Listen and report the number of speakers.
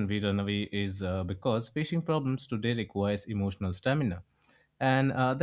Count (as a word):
one